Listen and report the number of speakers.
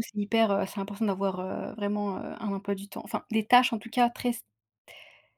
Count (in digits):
1